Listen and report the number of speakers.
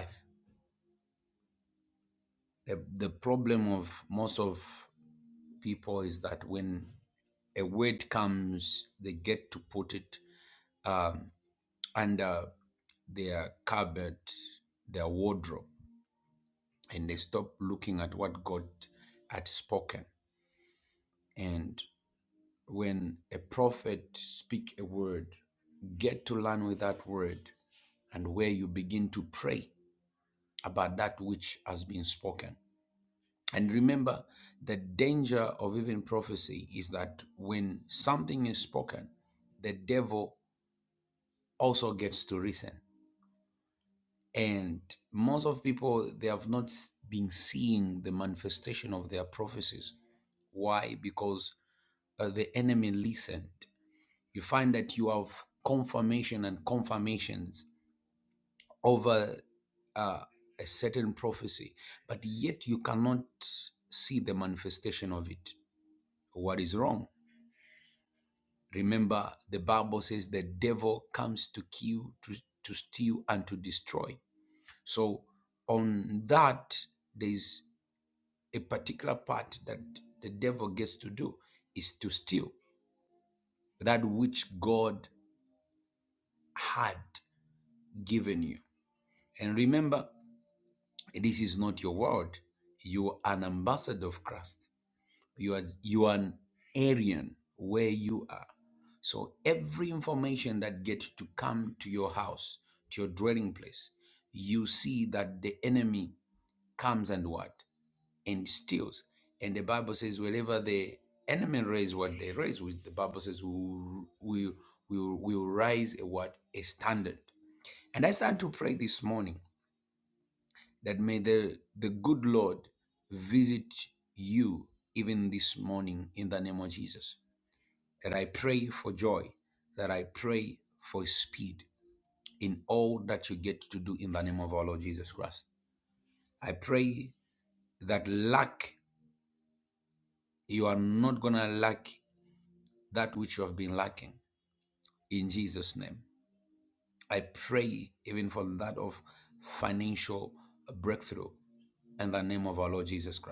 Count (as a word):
one